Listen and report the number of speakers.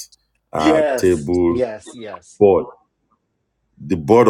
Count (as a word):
two